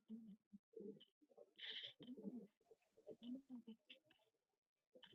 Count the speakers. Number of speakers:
zero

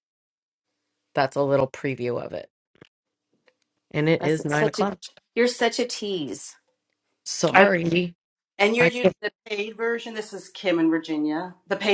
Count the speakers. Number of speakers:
three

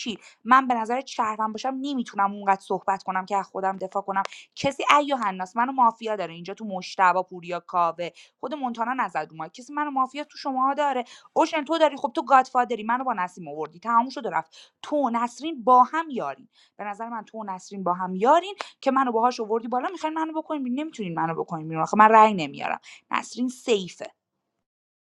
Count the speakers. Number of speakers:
one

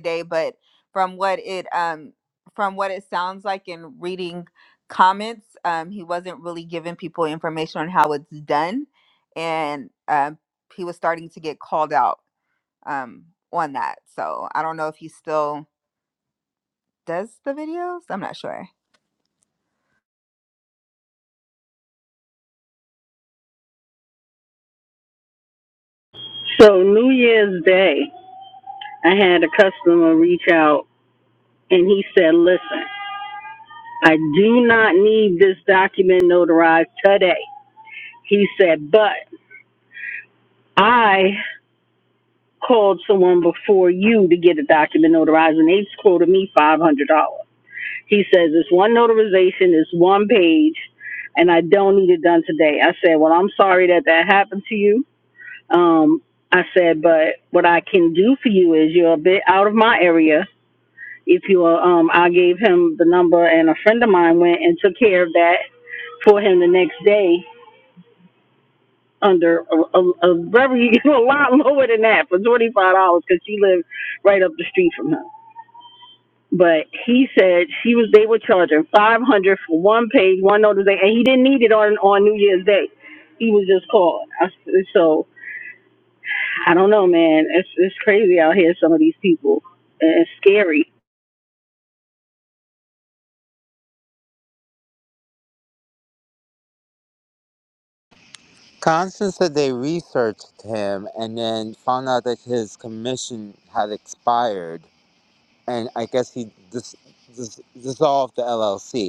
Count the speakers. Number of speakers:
three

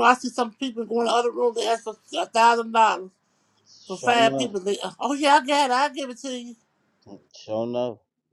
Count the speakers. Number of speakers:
two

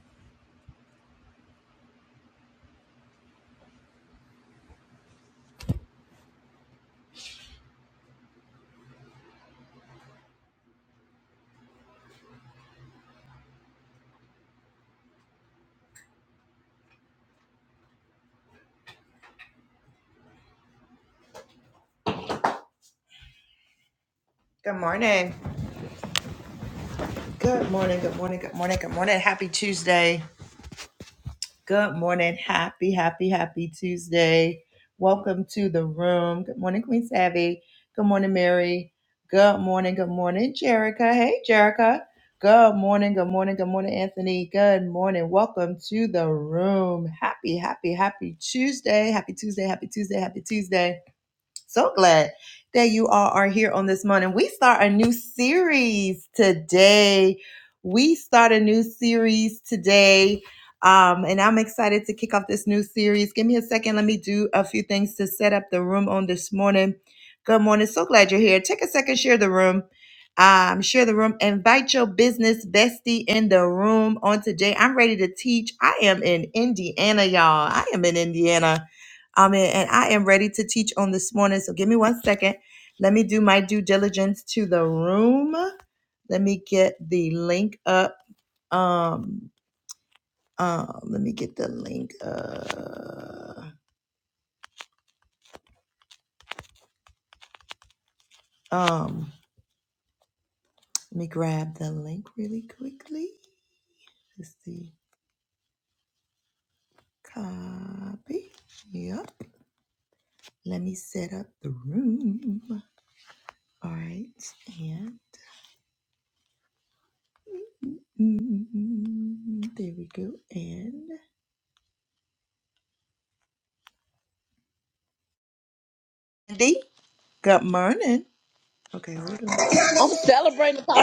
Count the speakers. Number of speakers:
two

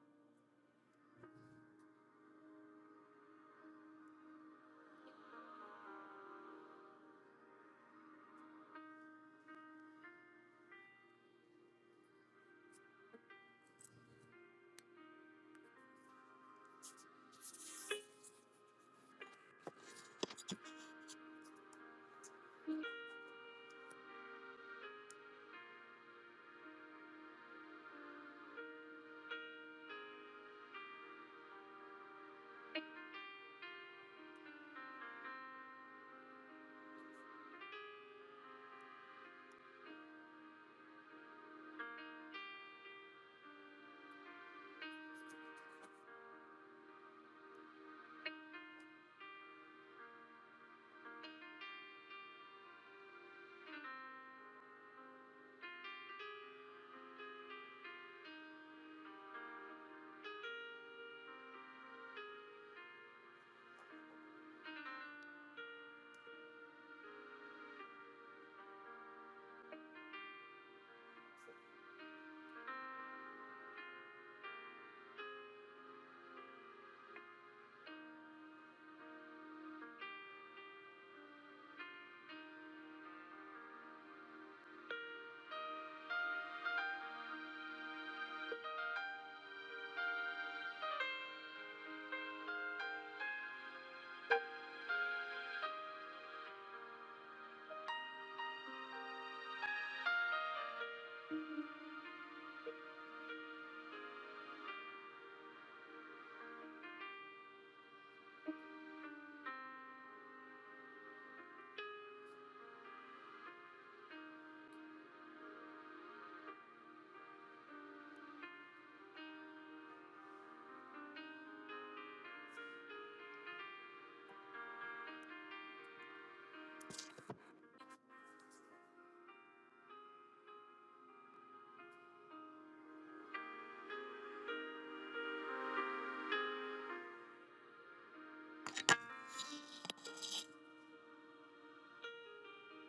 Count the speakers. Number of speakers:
zero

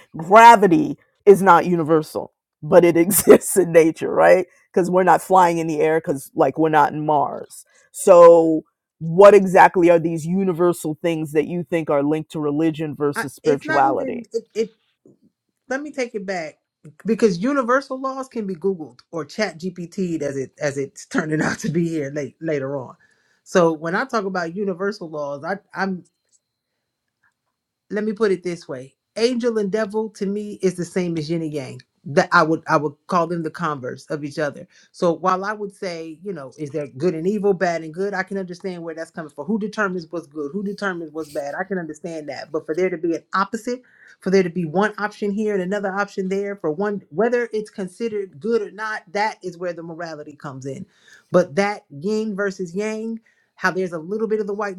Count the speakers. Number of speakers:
two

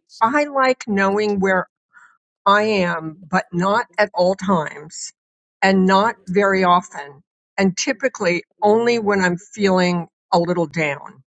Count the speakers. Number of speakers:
one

